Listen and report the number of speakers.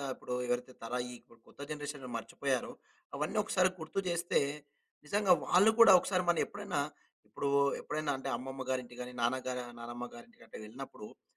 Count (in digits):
1